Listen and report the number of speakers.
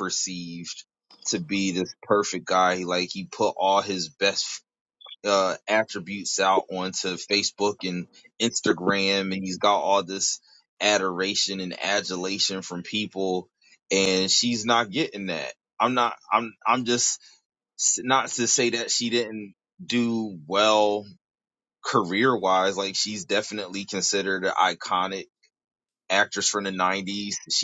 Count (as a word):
one